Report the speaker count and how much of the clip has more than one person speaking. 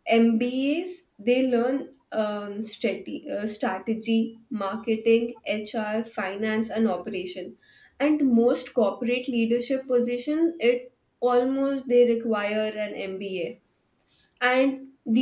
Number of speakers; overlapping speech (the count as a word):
one, no overlap